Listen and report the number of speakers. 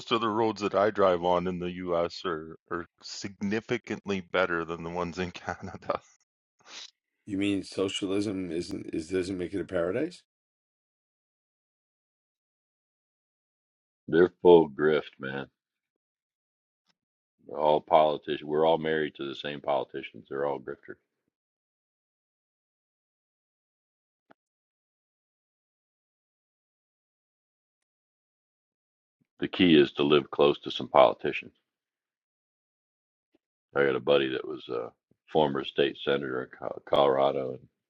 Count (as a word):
three